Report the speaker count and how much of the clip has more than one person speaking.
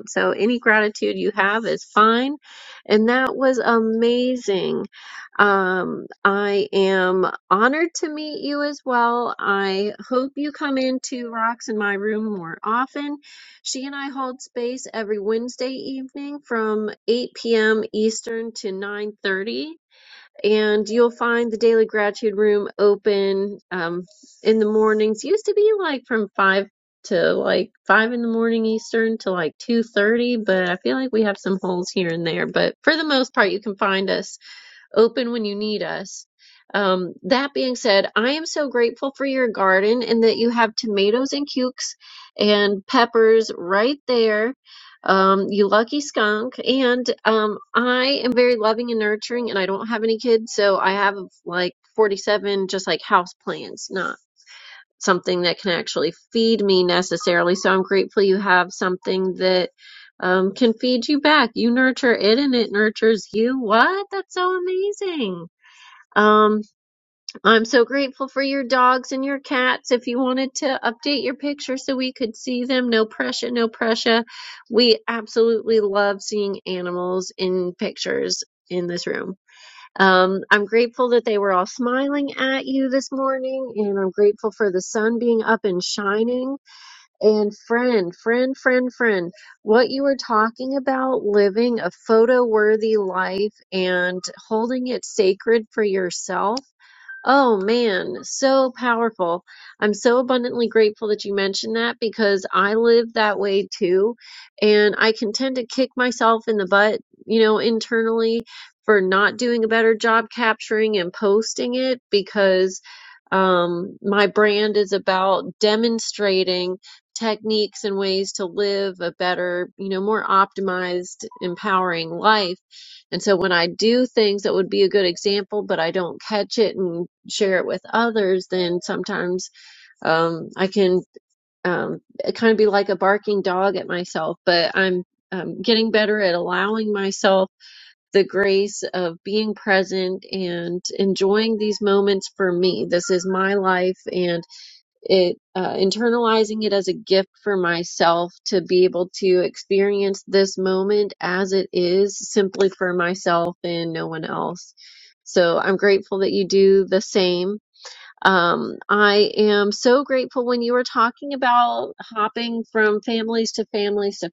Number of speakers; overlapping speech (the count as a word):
one, no overlap